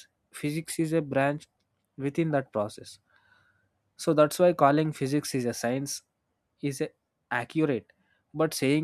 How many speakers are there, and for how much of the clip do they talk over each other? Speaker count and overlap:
one, no overlap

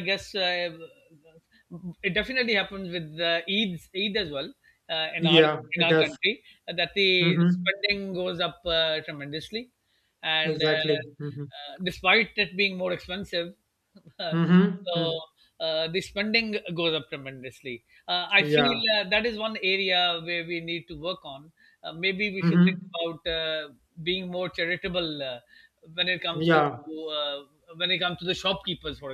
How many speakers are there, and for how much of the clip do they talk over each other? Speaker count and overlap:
two, about 13%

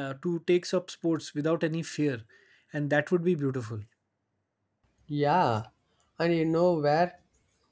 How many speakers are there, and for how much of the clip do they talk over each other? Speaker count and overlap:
two, no overlap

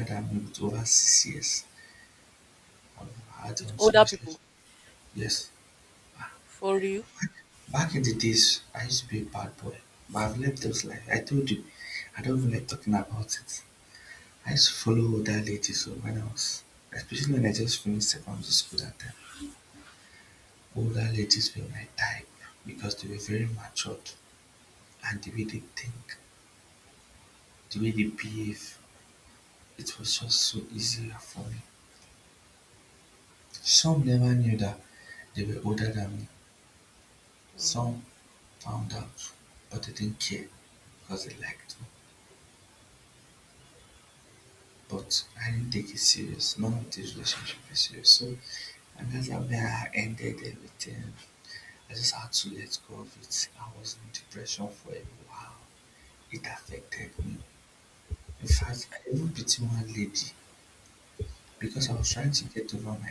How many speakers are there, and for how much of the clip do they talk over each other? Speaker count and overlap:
two, about 1%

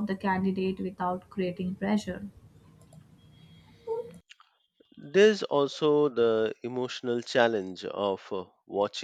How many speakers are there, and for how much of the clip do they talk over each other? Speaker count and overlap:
two, no overlap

